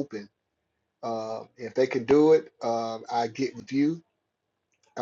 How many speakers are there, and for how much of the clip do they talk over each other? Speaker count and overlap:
1, no overlap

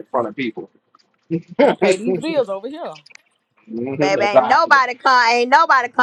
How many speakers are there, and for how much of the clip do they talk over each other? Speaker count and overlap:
3, about 13%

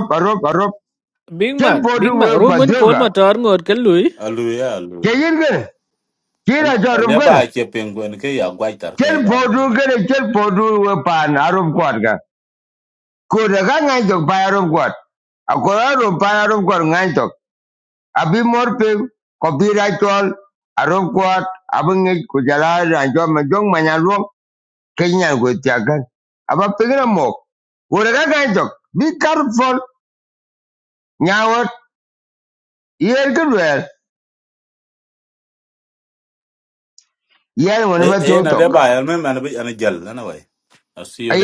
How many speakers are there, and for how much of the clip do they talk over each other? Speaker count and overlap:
3, about 9%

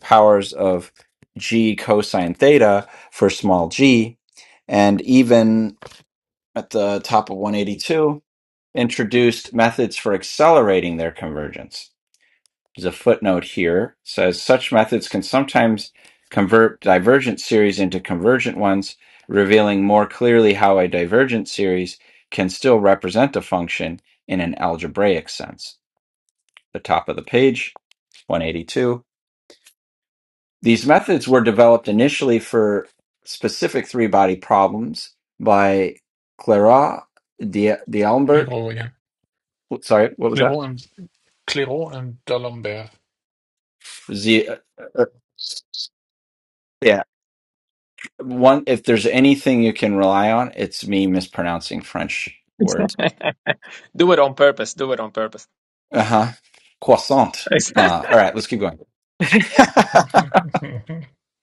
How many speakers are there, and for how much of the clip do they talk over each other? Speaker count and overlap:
3, about 1%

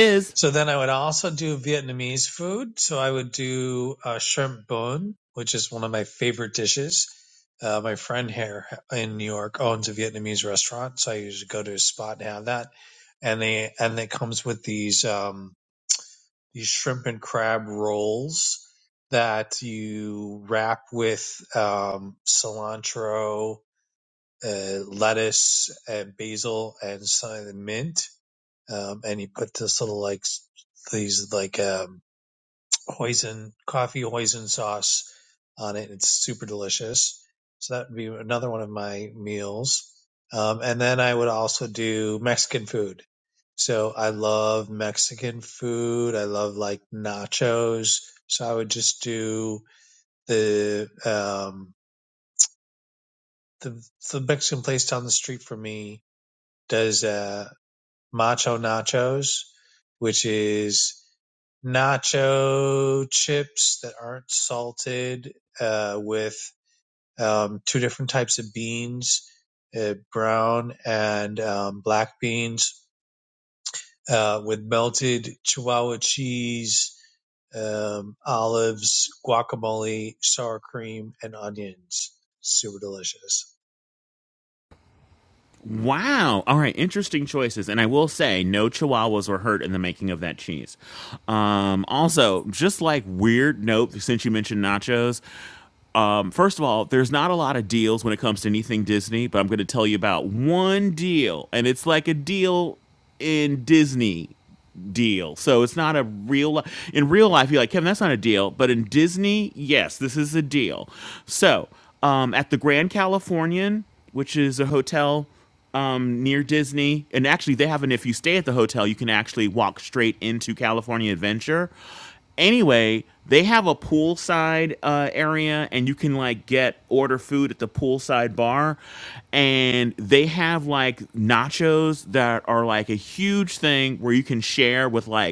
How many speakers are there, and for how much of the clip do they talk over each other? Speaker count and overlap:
2, no overlap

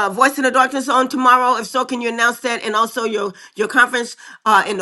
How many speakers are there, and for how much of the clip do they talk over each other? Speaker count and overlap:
1, no overlap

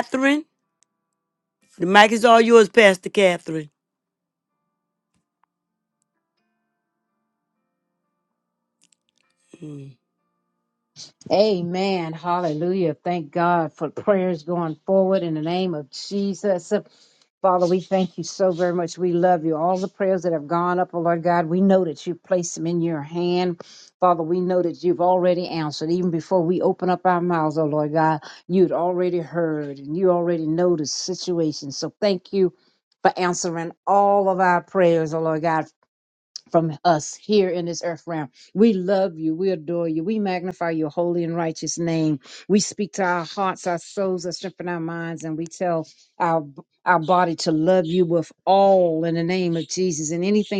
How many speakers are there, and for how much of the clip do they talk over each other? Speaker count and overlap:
2, no overlap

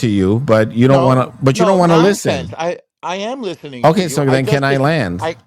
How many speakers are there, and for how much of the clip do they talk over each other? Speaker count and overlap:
2, about 42%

